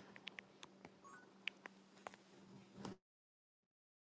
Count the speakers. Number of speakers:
0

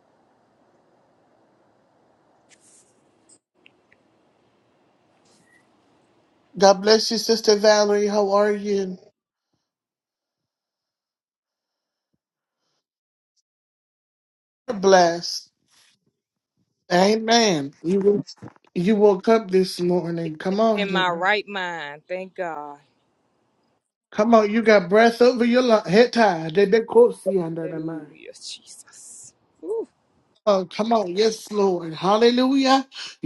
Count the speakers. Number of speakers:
2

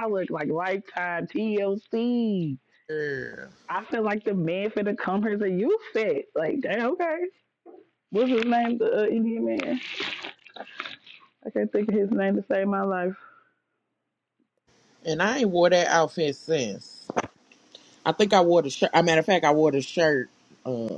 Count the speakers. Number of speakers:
2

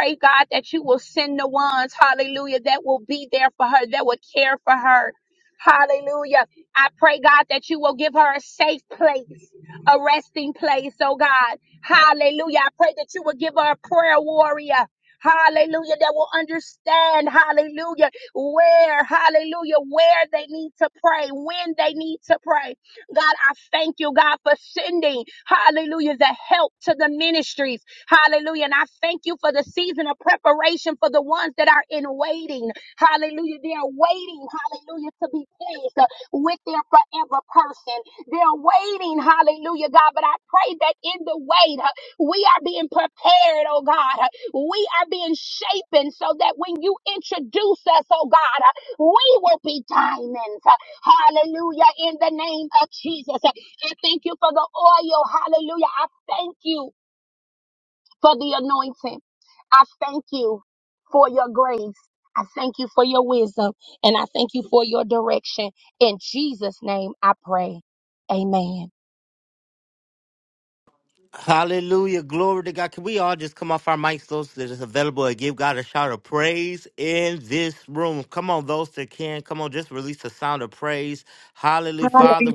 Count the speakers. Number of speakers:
2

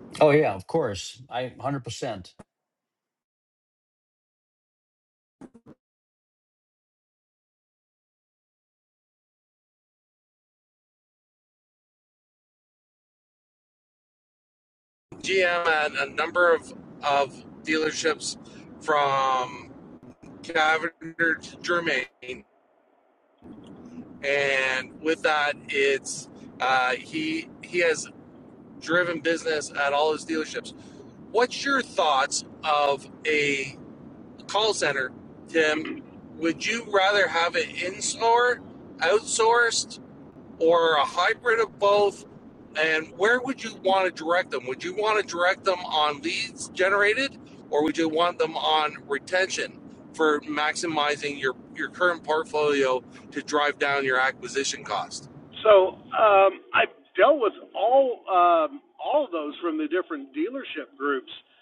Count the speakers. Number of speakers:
3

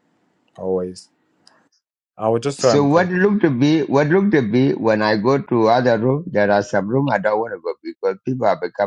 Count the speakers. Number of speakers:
2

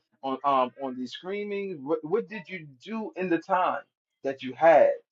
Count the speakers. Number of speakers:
1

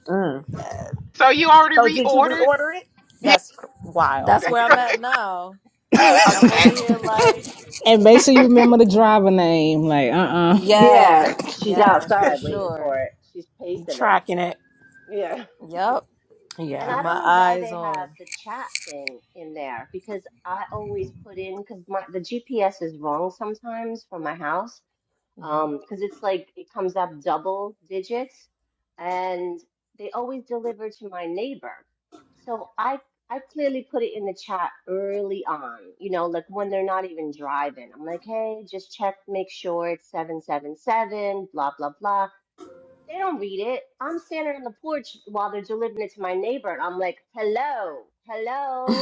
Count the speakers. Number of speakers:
5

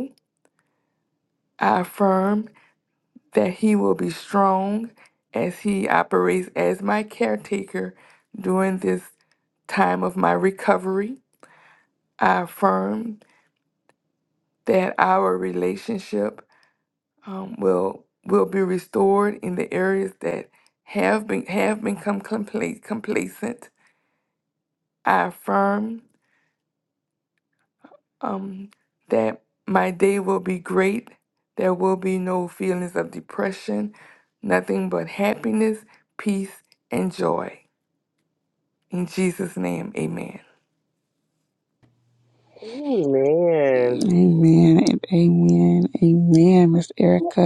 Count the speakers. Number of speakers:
3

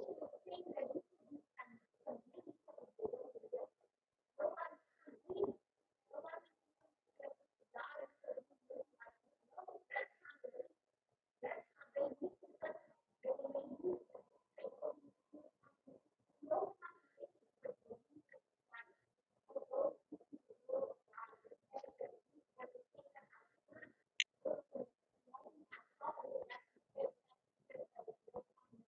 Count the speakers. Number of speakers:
0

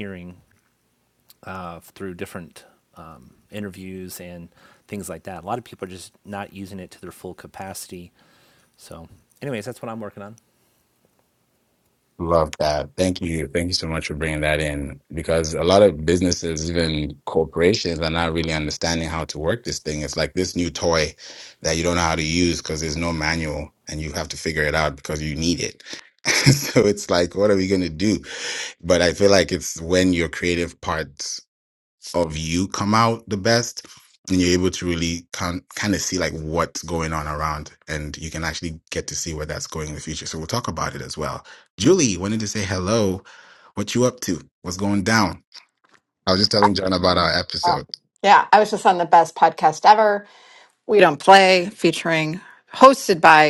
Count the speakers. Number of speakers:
3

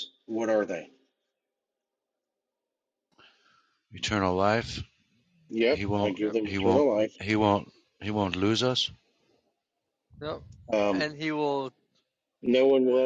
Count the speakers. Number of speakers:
3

